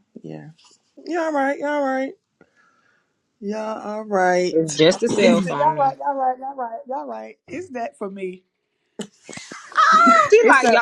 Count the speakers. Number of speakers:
three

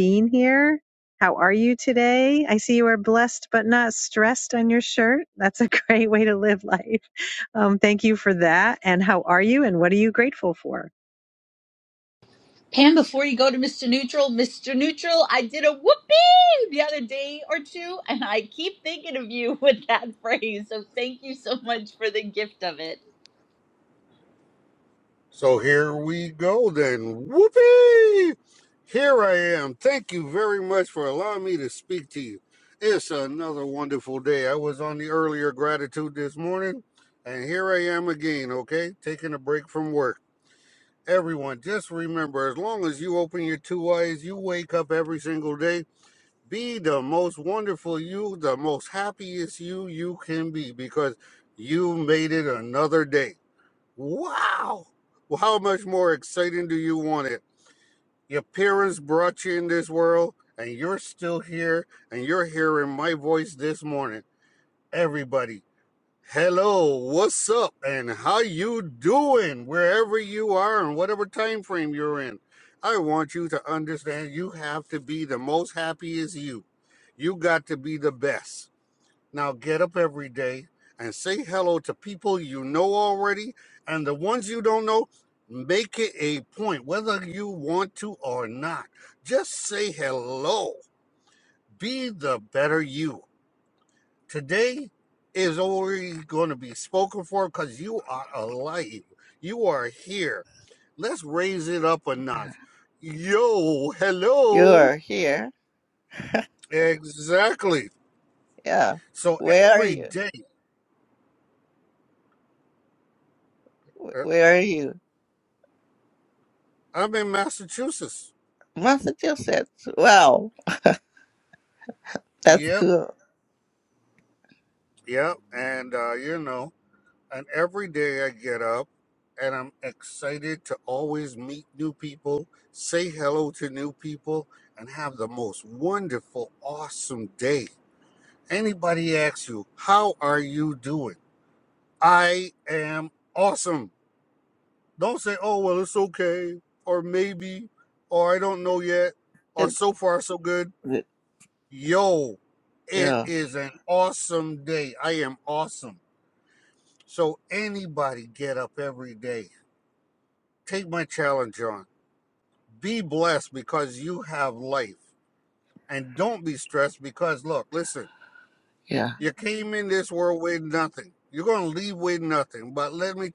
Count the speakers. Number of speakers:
four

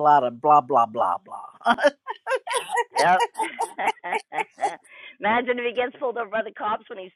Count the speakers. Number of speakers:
two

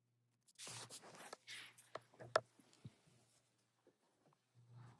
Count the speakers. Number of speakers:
zero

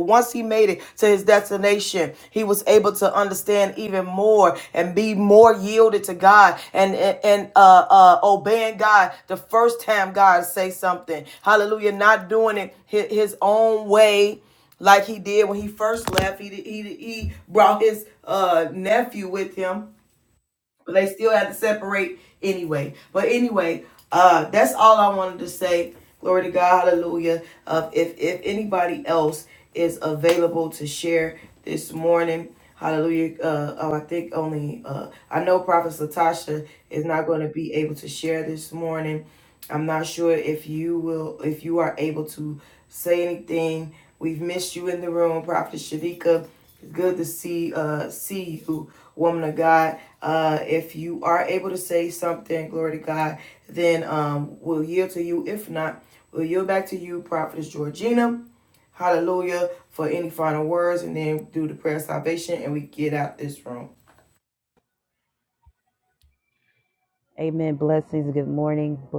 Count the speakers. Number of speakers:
two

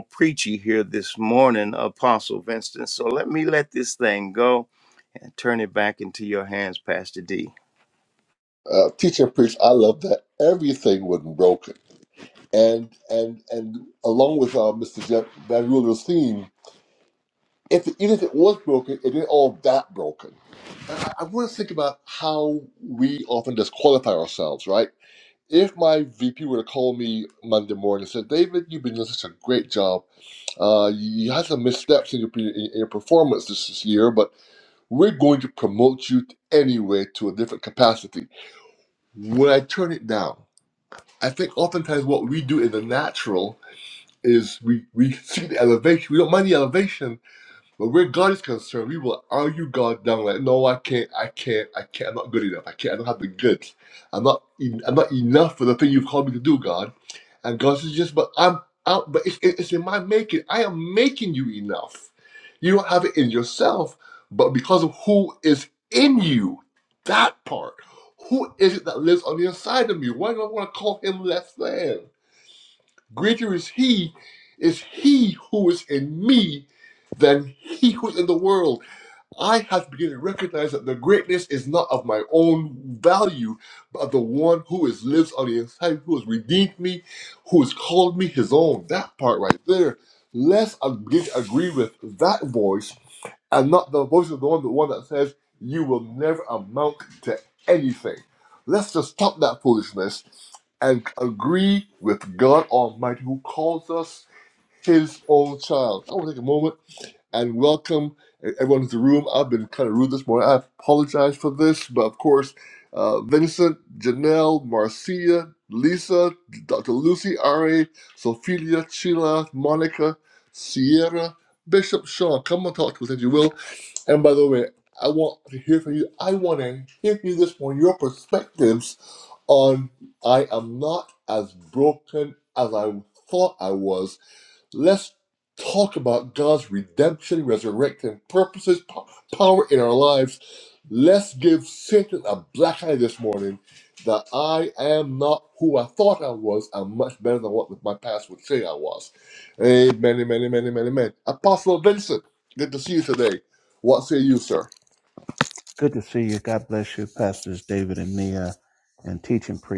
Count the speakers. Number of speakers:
three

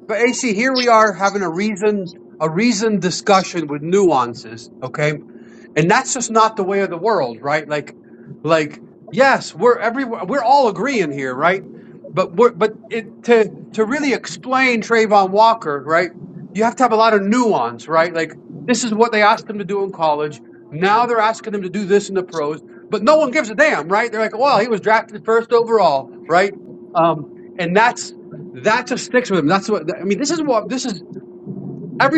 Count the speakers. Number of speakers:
one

